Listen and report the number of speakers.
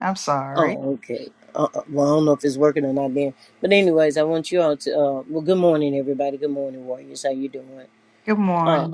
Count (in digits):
2